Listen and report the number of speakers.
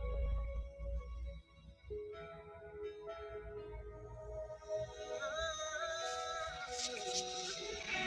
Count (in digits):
0